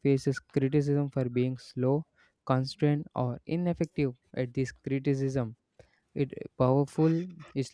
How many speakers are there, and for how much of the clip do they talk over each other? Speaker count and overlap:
1, no overlap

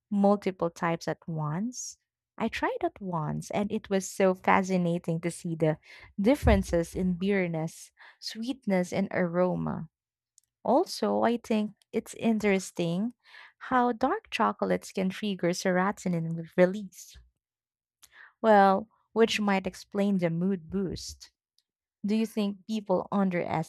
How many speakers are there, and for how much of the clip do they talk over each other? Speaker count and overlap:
1, no overlap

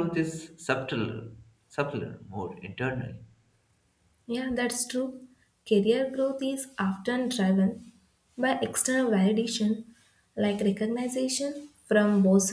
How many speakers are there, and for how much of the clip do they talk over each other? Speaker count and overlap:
2, no overlap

